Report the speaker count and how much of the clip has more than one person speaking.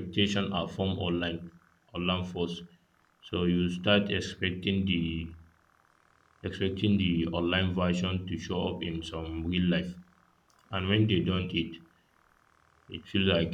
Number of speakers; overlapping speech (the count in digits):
1, no overlap